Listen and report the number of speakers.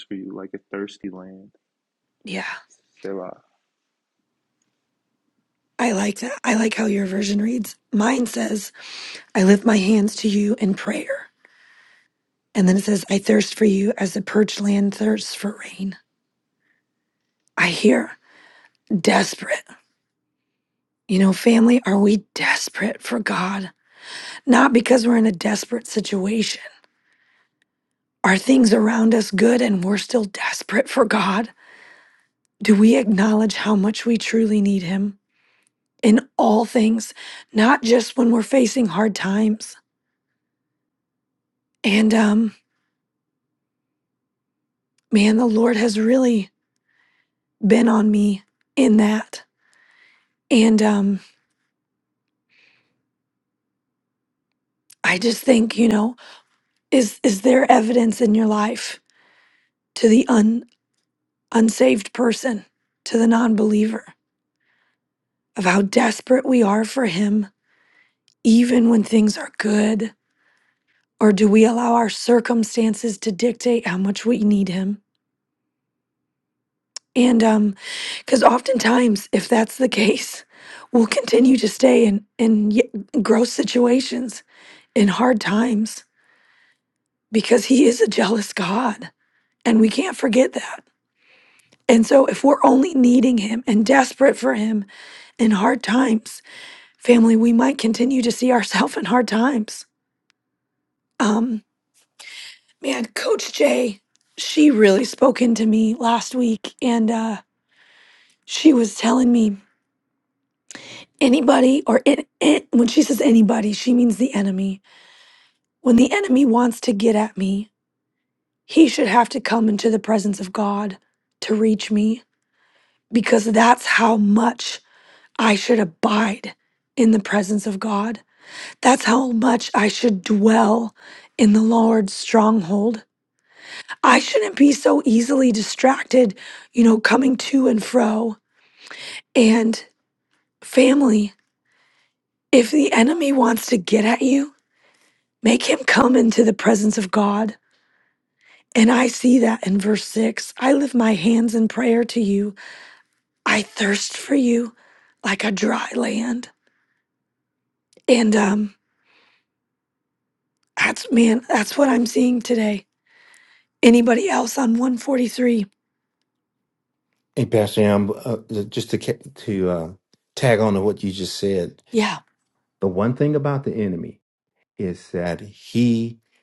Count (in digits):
3